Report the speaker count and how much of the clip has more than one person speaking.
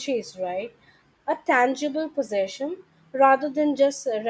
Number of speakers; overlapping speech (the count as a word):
one, no overlap